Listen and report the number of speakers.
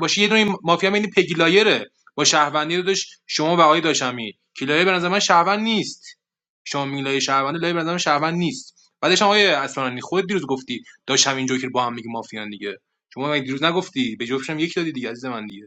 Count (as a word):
one